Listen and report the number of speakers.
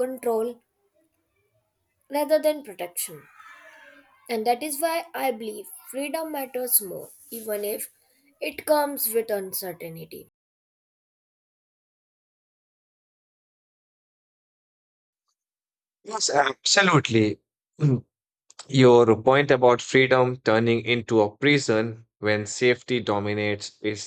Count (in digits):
2